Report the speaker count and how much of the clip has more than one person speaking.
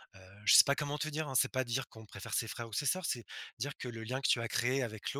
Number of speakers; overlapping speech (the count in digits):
1, no overlap